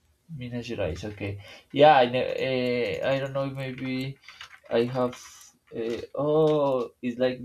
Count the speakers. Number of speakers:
1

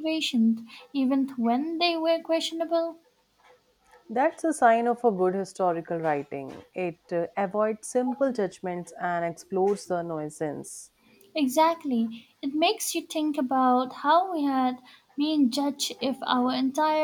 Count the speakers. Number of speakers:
2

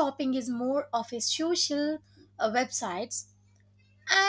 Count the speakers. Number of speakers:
1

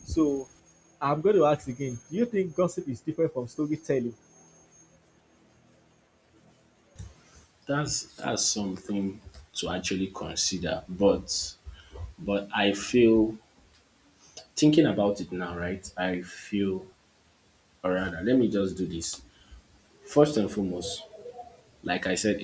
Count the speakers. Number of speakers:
2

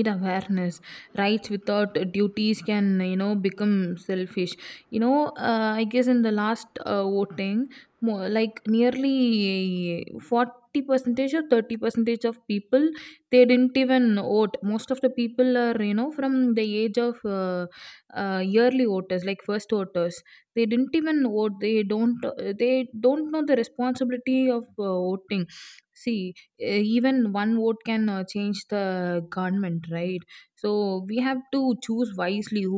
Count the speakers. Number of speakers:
1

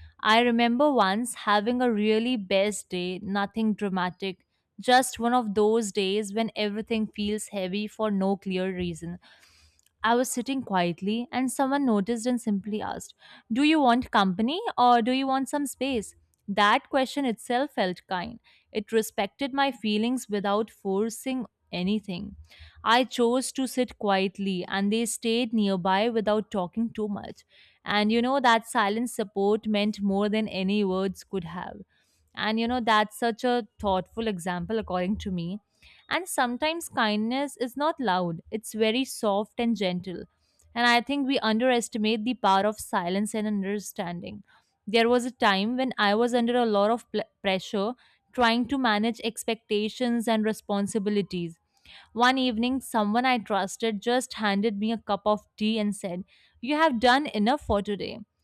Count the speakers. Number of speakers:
1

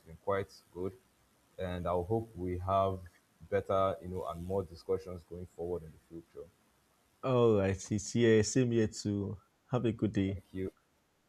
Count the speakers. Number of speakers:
2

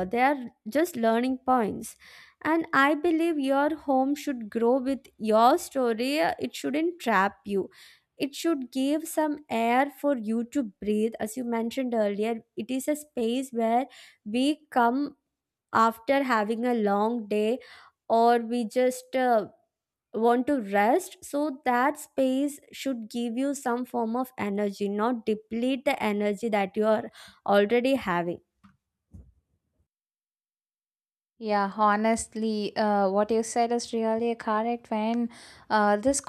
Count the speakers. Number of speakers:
2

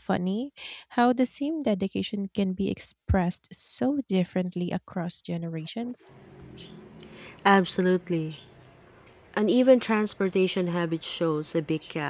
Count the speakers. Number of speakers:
2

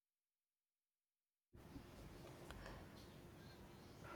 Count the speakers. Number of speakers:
0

